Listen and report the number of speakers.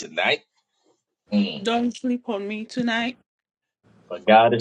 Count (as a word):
two